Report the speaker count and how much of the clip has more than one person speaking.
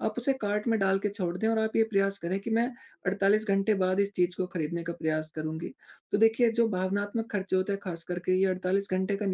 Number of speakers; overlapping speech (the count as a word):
one, no overlap